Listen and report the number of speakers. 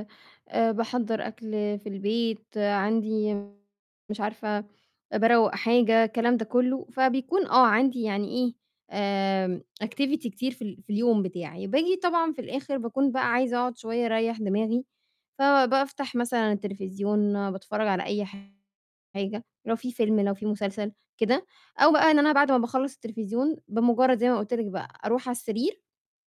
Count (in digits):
1